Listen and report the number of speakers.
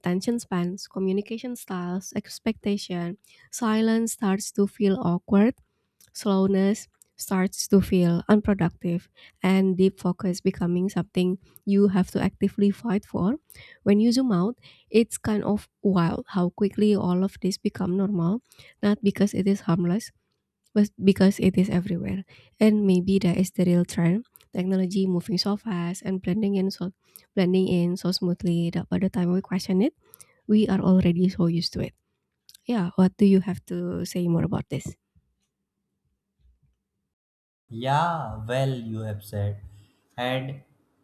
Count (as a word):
two